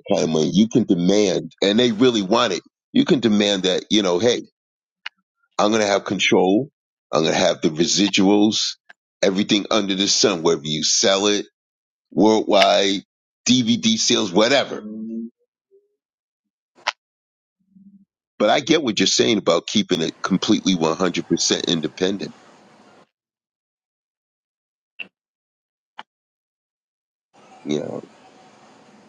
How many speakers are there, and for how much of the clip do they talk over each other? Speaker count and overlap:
1, no overlap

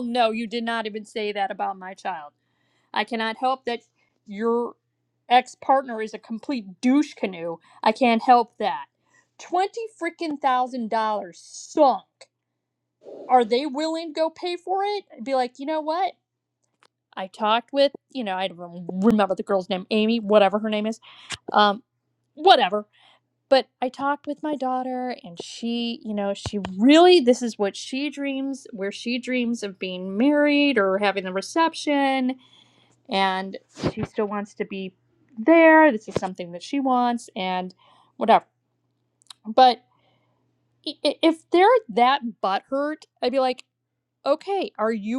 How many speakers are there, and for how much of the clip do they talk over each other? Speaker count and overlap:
1, no overlap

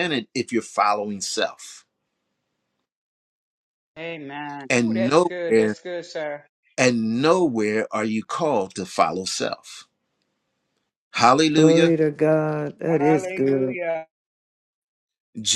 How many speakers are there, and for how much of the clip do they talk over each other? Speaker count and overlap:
3, about 15%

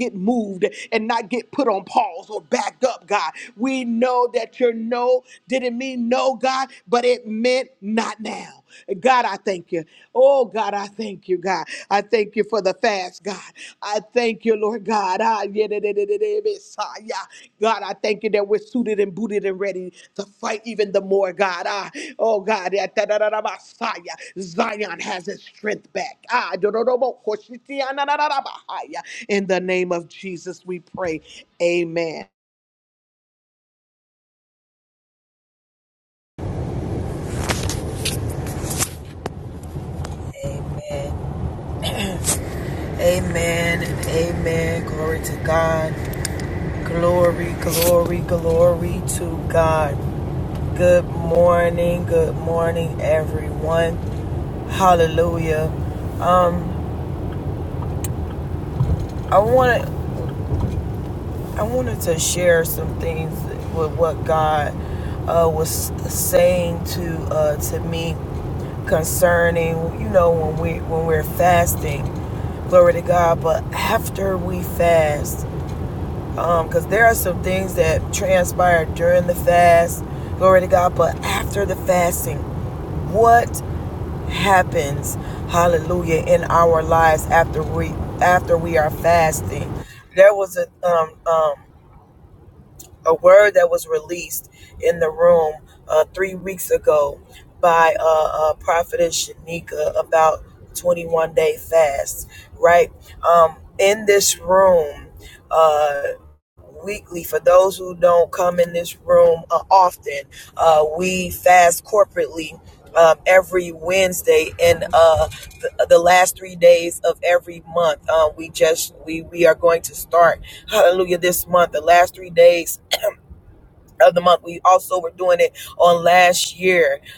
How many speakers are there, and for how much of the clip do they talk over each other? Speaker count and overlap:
2, no overlap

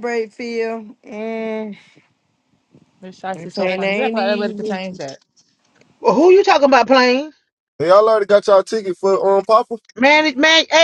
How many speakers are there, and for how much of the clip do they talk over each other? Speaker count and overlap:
4, about 13%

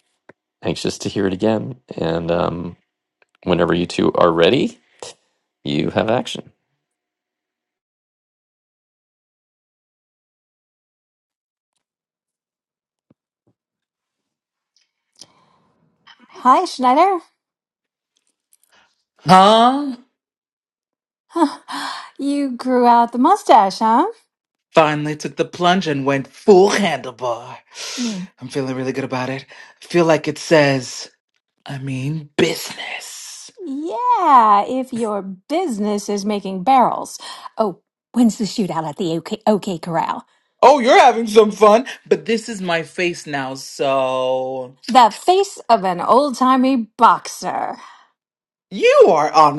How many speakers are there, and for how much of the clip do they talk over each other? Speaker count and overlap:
3, no overlap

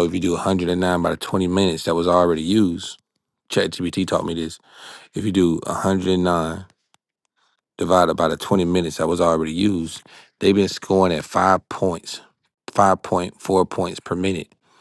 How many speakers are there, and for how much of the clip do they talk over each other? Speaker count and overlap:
1, no overlap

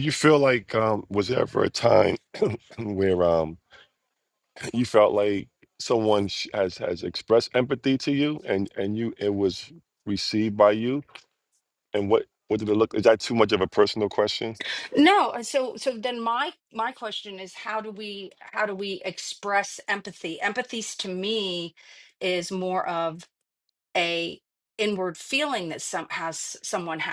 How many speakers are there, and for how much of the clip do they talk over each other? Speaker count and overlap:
2, no overlap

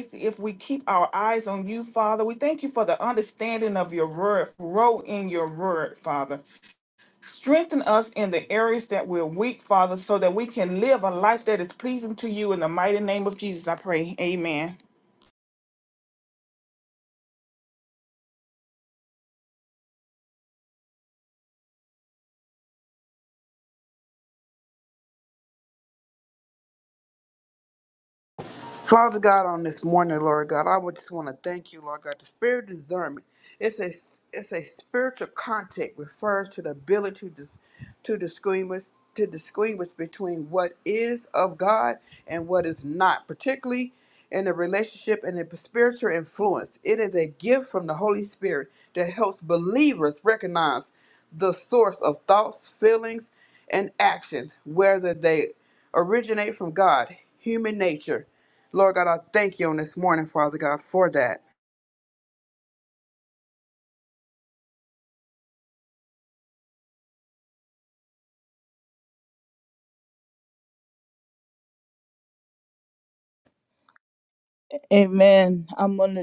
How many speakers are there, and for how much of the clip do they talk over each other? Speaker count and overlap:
3, no overlap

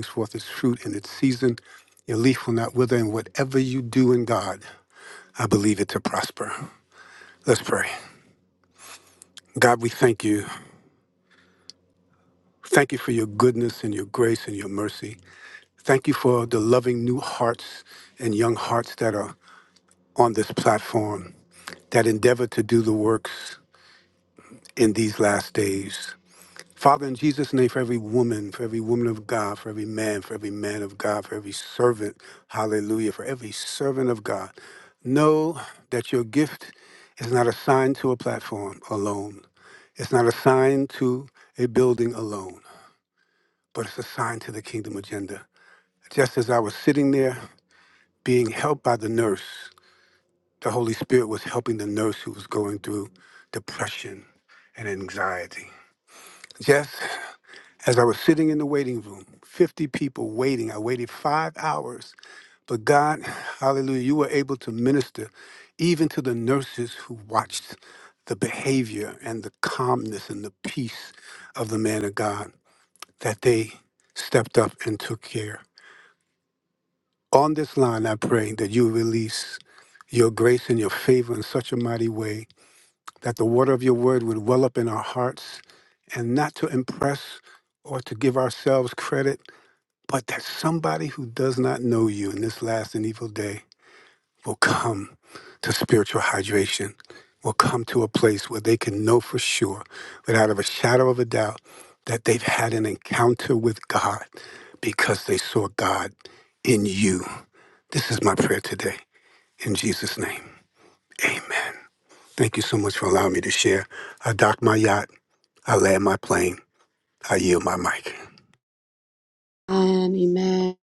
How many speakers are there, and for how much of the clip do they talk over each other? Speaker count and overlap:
2, no overlap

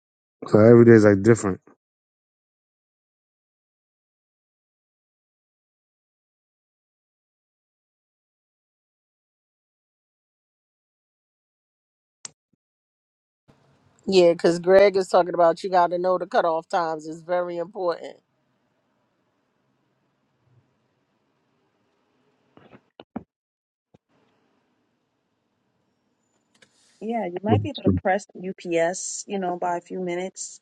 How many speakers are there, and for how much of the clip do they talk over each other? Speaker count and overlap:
3, no overlap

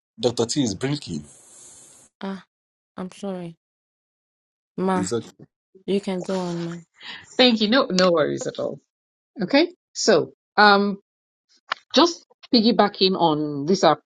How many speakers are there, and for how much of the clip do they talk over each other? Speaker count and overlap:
3, about 1%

